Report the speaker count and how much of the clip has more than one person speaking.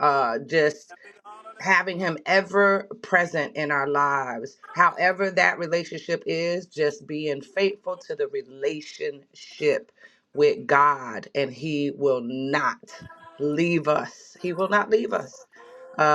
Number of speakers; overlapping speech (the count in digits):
1, no overlap